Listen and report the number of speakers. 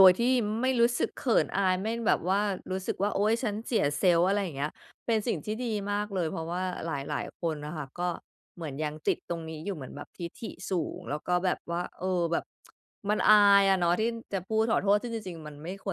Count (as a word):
one